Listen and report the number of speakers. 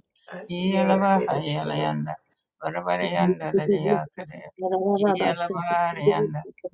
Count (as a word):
three